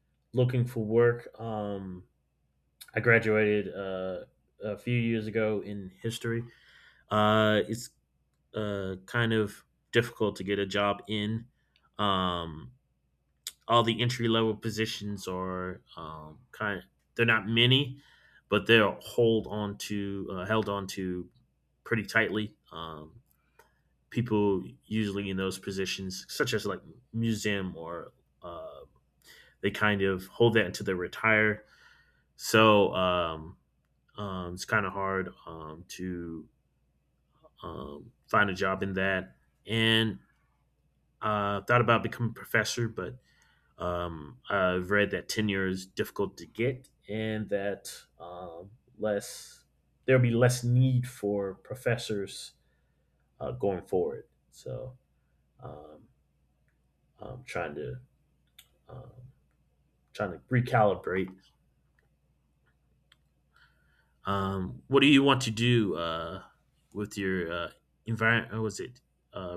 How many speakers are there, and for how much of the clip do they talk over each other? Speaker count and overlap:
1, no overlap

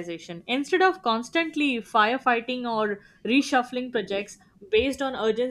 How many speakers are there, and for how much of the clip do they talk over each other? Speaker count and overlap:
1, no overlap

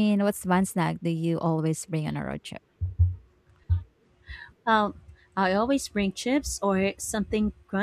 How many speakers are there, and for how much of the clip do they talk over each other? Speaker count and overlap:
2, no overlap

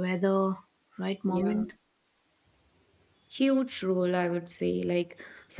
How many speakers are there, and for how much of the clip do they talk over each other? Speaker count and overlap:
2, about 7%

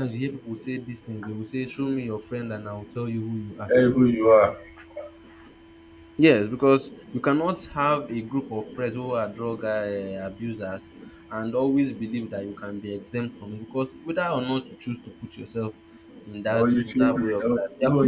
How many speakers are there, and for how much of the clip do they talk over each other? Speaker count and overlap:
2, about 9%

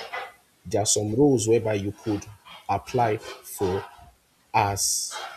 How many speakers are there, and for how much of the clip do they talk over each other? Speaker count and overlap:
1, no overlap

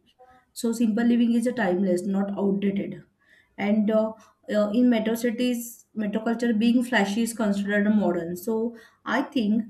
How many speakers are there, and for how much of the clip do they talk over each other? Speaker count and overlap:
1, no overlap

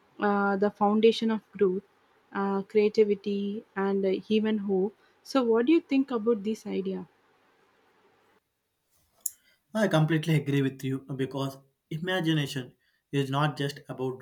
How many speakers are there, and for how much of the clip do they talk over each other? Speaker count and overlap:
2, no overlap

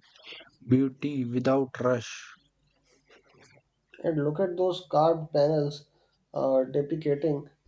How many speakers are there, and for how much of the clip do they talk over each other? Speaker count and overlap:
2, no overlap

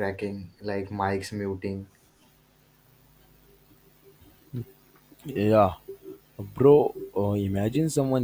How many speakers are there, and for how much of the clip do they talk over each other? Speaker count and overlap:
2, no overlap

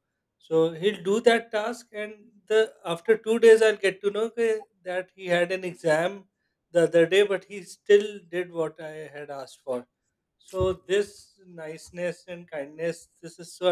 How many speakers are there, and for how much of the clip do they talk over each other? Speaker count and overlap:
1, no overlap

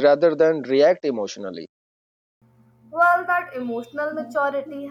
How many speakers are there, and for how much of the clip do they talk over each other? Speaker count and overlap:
2, no overlap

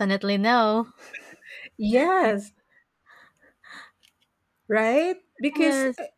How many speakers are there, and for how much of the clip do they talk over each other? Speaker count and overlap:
2, about 7%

